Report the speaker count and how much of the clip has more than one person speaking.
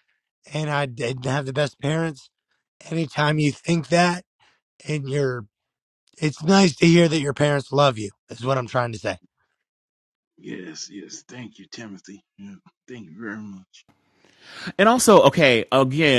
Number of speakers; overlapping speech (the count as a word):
three, no overlap